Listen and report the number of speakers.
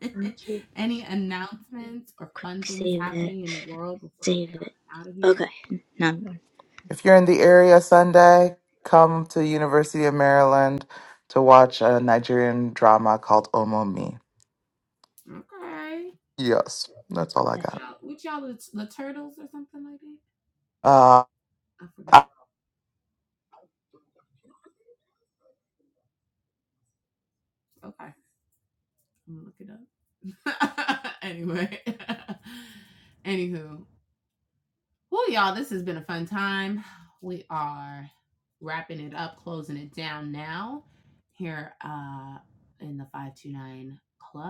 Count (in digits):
3